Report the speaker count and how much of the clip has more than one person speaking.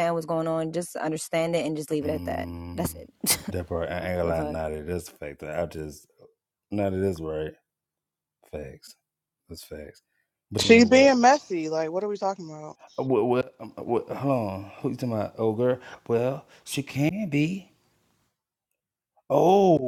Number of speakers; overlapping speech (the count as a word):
three, about 10%